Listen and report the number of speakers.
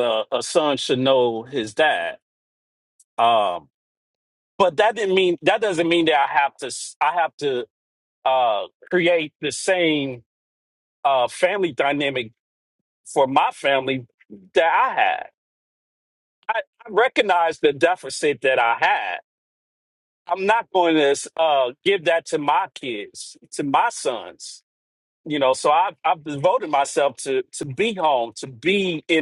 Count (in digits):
1